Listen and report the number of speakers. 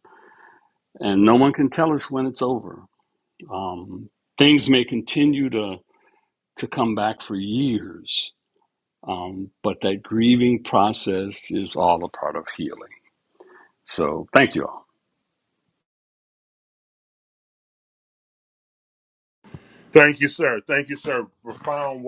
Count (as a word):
two